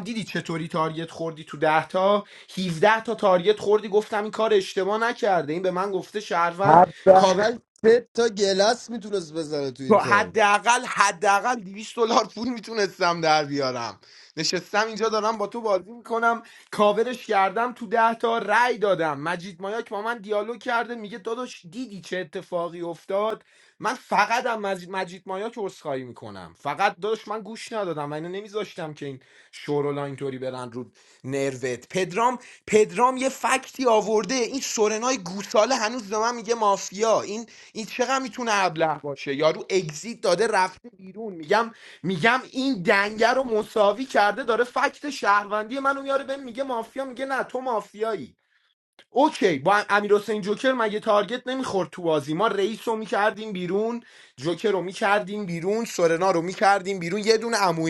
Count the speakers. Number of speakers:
2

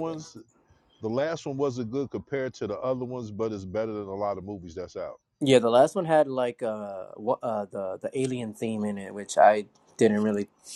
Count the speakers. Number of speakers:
2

